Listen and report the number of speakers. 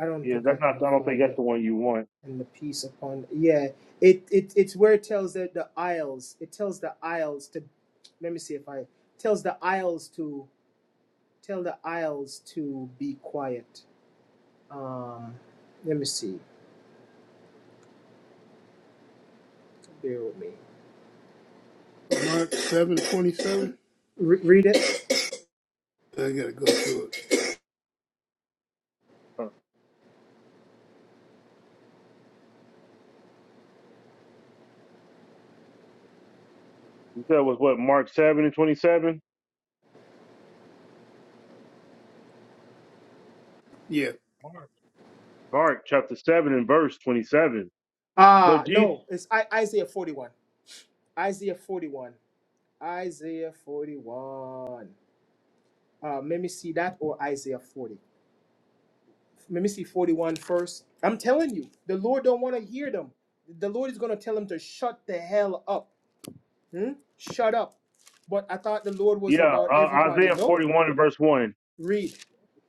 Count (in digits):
3